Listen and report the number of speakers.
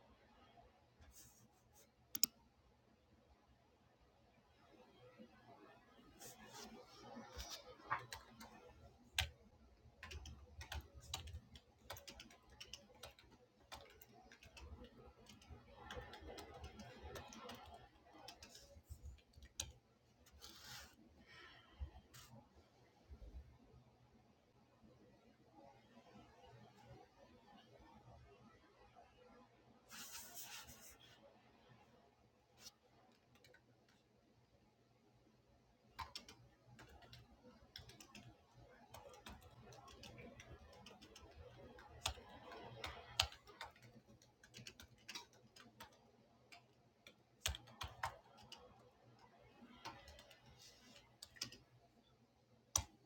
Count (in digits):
0